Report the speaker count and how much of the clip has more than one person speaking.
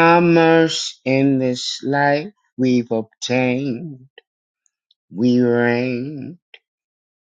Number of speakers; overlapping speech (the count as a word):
one, no overlap